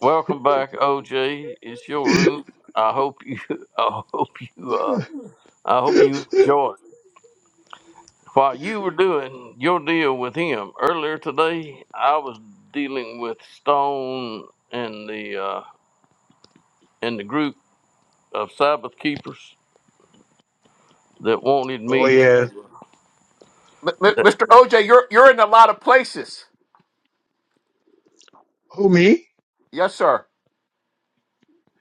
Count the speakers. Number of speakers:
3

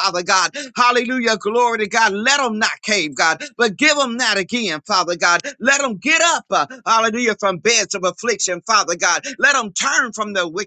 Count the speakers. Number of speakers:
1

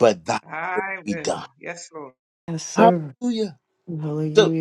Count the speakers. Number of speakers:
3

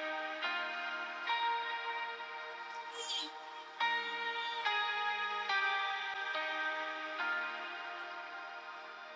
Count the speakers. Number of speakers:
0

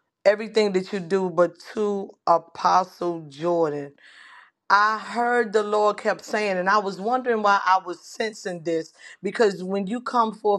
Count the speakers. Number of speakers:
1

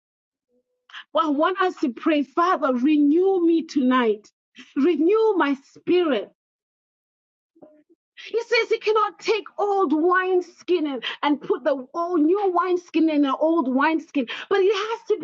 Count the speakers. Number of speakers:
1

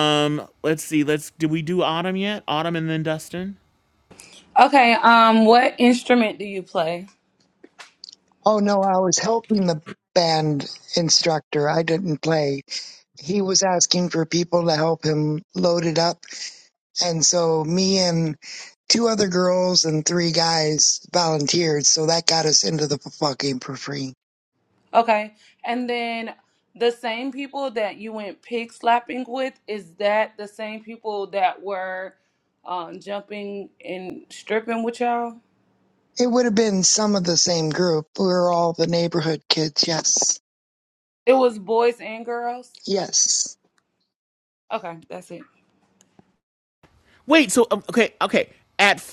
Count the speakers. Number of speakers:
3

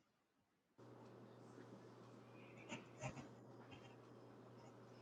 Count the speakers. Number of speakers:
0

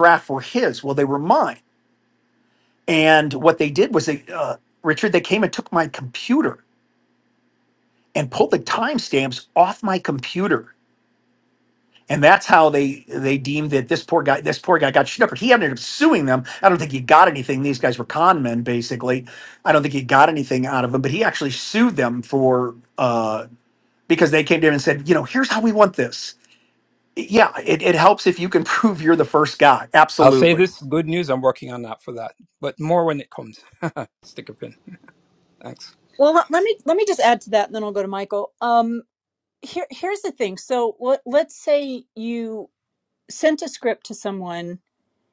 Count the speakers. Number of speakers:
3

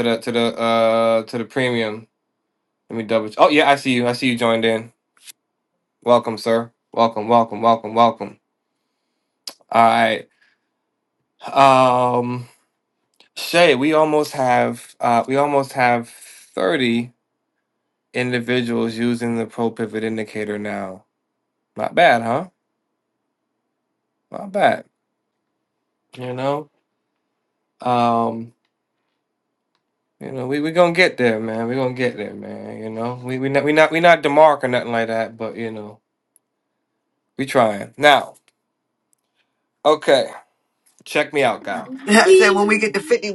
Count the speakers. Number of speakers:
2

